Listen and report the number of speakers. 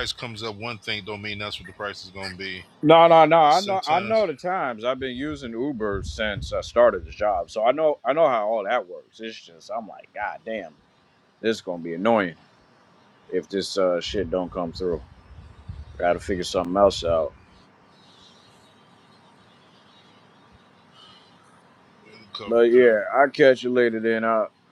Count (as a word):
two